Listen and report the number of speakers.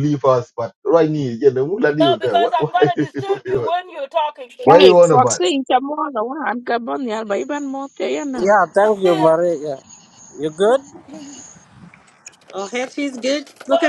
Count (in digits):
5